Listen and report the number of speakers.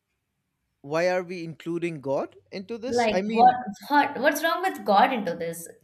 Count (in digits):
2